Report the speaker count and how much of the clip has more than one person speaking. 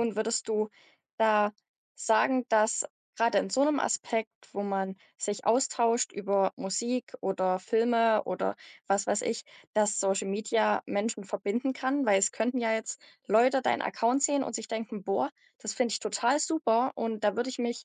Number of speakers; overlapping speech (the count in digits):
1, no overlap